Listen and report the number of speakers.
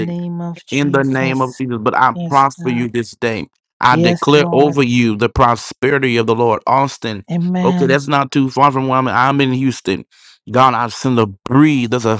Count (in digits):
2